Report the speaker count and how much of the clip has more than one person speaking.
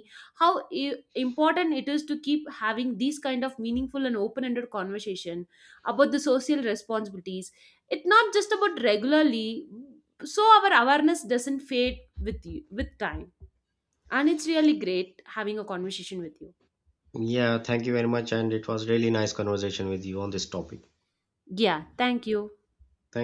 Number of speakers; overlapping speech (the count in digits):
2, no overlap